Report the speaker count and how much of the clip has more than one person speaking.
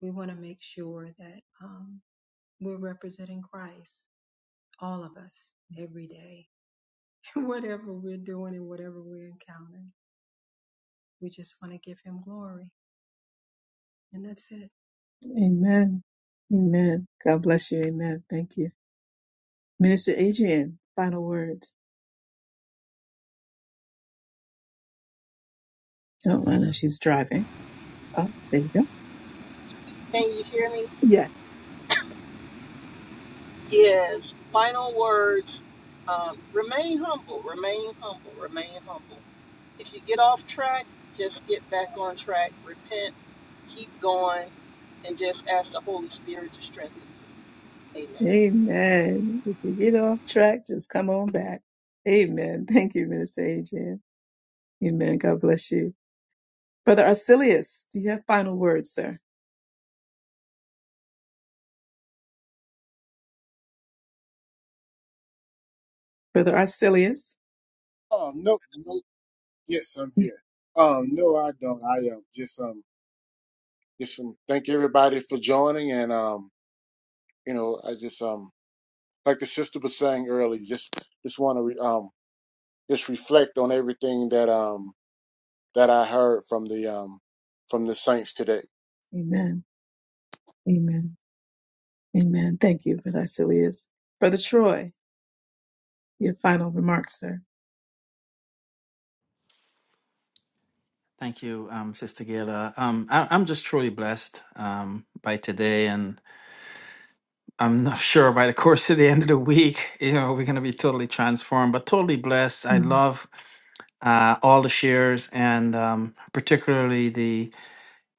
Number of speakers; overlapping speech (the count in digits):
5, under 1%